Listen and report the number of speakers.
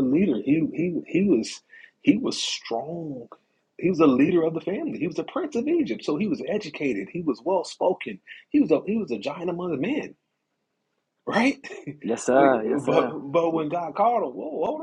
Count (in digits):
2